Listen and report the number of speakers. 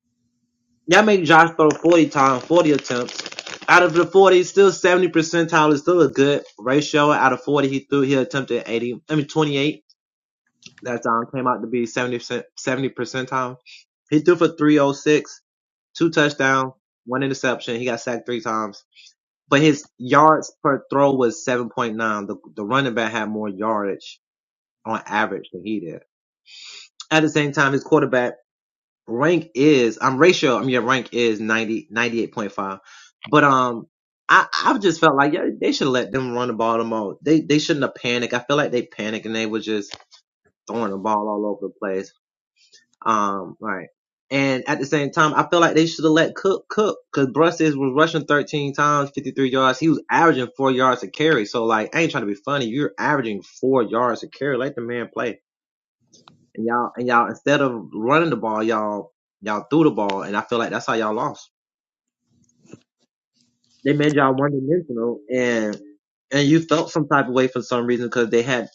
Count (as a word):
one